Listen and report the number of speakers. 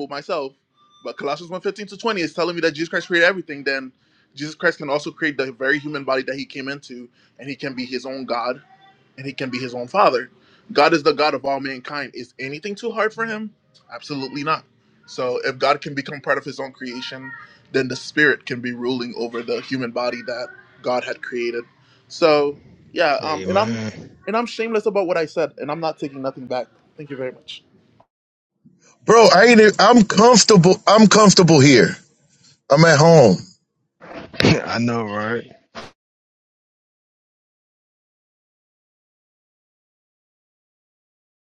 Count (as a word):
three